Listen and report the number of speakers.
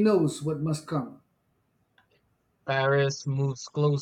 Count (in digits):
2